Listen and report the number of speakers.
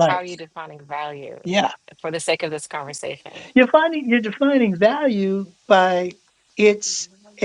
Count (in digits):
2